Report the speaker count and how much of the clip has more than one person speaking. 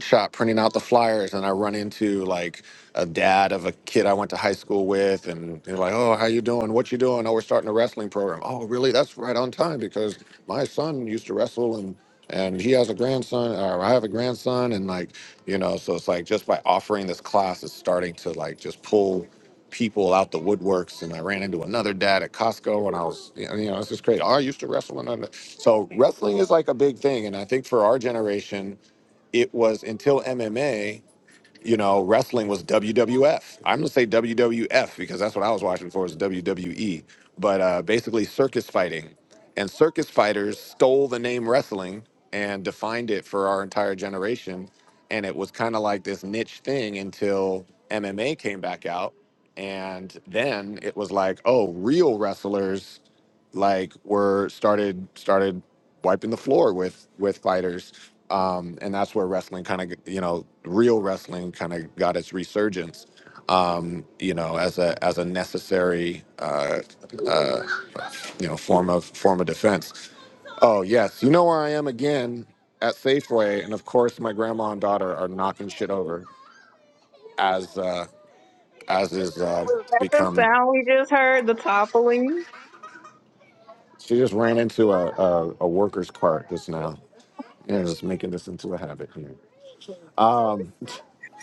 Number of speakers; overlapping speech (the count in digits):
2, about 1%